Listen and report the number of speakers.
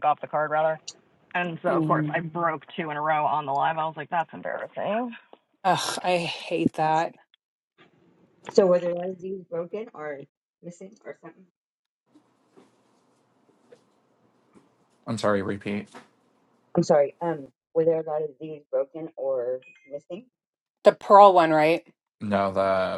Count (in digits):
4